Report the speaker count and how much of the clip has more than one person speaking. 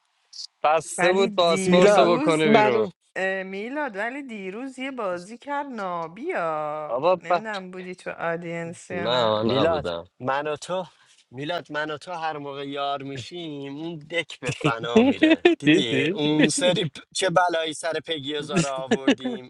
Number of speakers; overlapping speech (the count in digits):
3, about 18%